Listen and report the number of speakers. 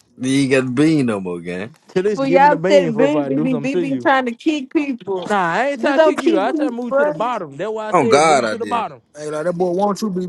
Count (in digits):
4